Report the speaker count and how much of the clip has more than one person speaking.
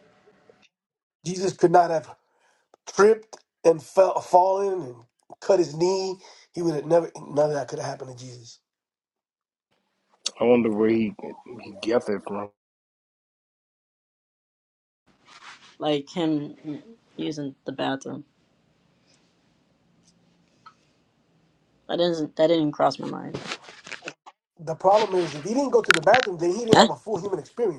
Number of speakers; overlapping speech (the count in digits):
3, about 1%